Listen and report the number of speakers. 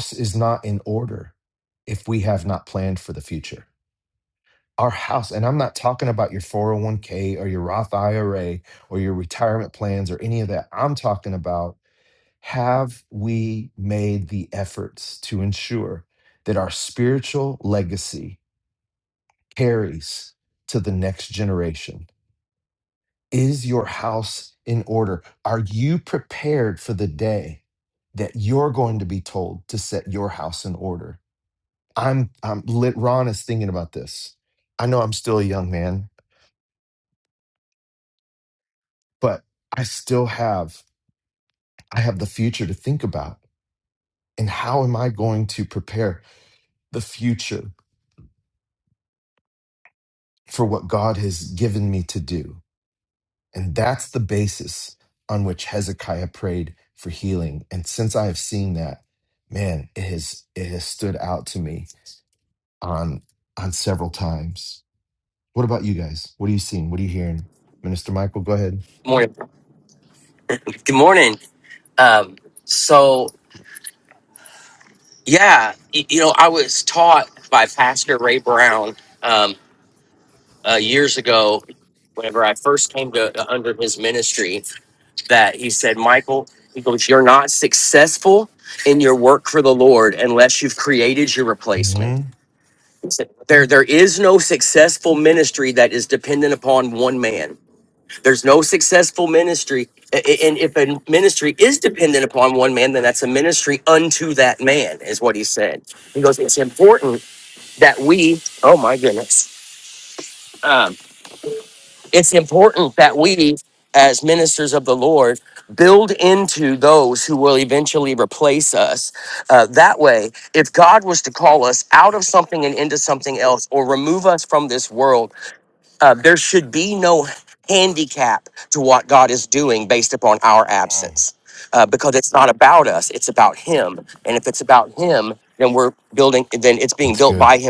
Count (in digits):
2